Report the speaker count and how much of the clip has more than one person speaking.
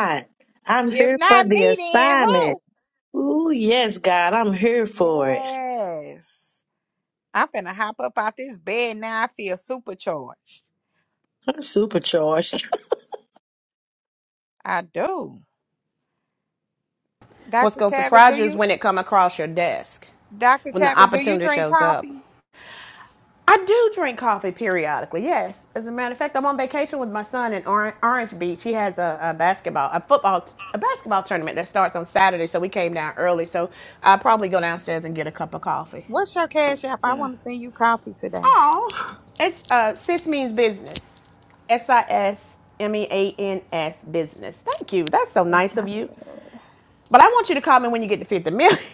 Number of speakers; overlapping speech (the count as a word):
three, about 11%